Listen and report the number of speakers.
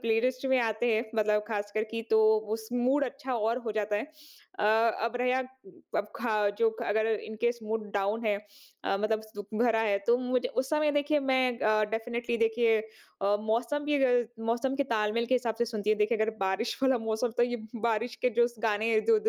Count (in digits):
1